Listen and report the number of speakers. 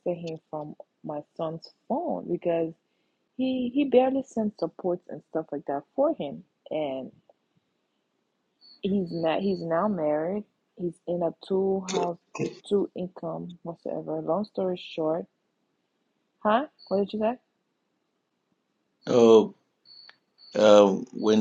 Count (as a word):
two